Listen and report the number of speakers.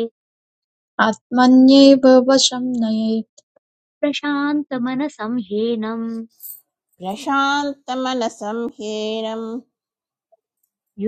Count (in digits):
3